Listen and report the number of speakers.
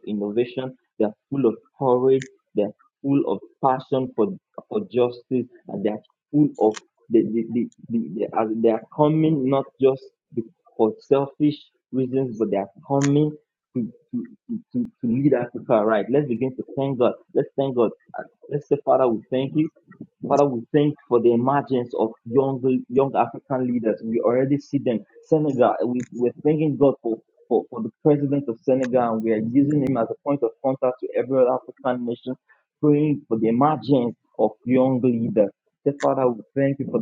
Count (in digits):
1